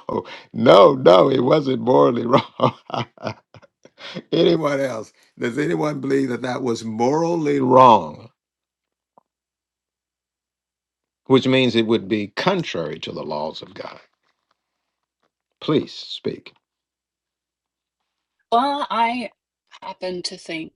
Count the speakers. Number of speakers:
2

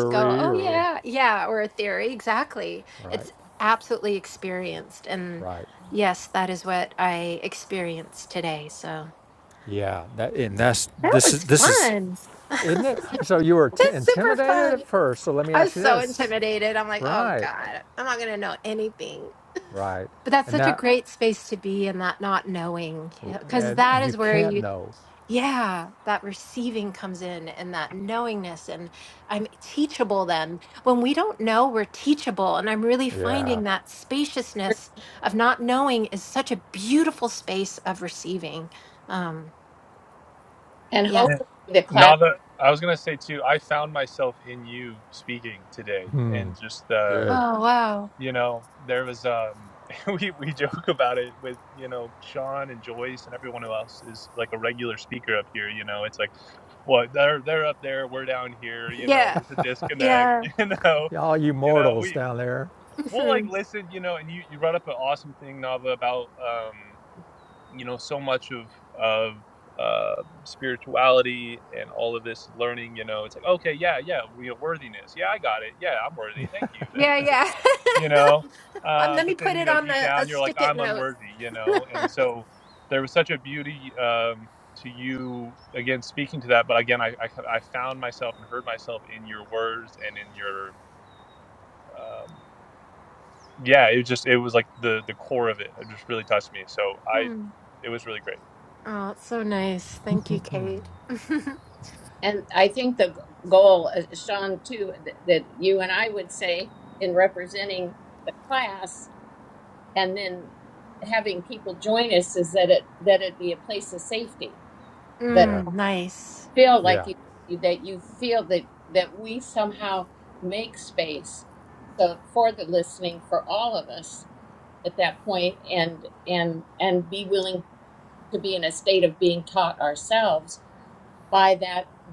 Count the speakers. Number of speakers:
4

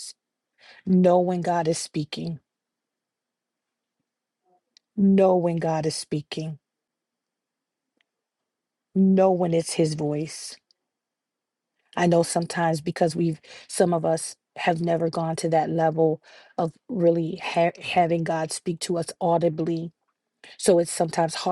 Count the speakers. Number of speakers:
1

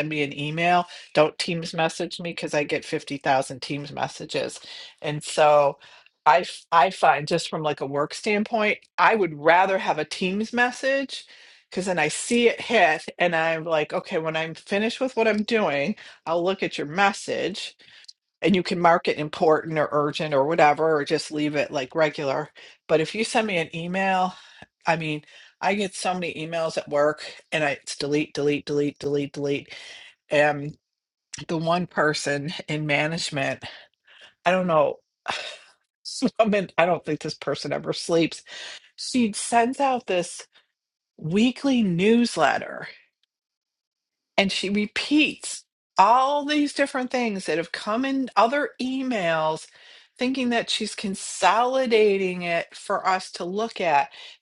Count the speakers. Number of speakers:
1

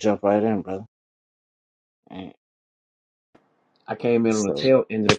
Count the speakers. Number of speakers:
2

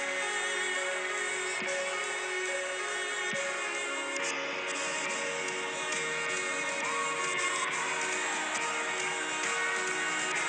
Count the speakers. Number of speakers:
0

